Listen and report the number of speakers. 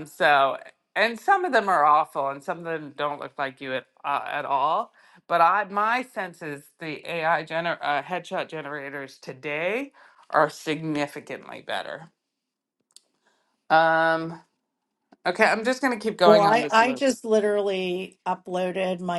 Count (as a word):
two